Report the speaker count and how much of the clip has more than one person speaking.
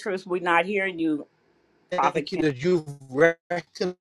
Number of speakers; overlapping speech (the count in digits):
2, about 11%